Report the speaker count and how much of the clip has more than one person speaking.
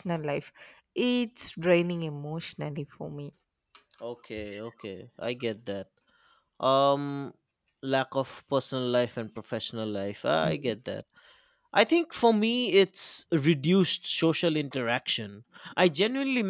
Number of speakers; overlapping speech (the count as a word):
two, no overlap